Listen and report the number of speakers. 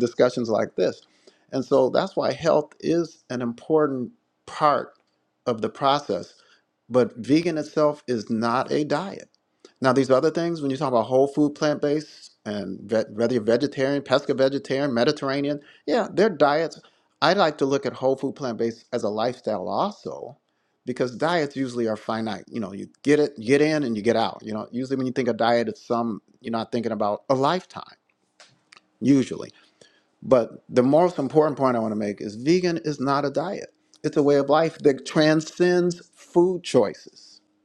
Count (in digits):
1